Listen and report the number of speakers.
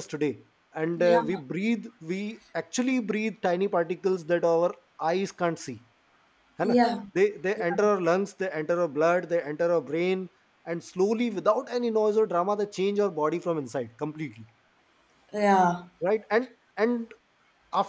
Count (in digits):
2